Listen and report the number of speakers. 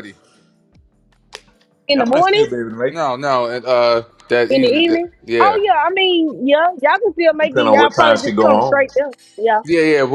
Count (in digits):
3